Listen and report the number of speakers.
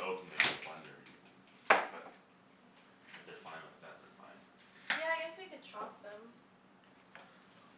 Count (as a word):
two